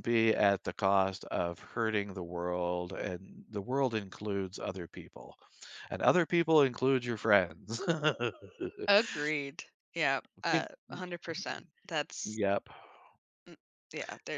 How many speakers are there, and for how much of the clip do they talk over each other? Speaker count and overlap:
two, no overlap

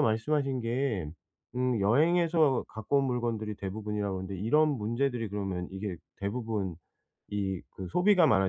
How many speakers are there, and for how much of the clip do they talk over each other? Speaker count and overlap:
one, no overlap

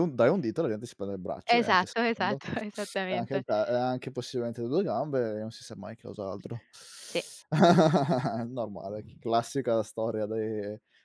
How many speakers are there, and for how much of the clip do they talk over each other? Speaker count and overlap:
two, about 8%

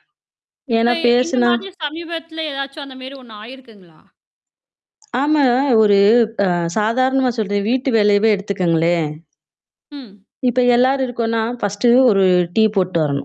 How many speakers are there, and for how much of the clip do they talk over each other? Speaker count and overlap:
two, about 6%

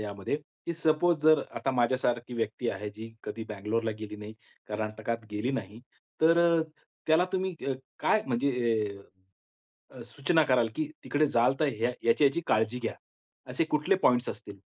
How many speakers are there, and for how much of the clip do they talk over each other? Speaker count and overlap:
one, no overlap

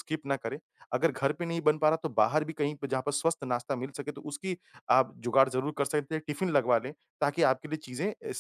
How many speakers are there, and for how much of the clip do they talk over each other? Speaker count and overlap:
one, no overlap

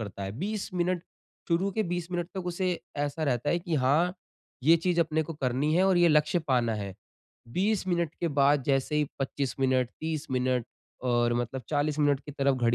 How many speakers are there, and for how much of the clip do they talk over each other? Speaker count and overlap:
one, no overlap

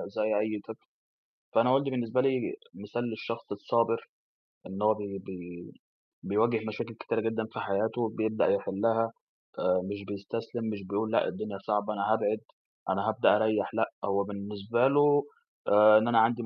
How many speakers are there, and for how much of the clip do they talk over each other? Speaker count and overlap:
one, no overlap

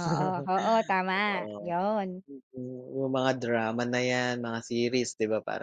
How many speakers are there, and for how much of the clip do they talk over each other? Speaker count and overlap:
two, about 11%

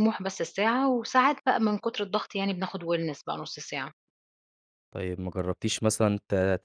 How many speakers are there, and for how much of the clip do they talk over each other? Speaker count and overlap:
two, no overlap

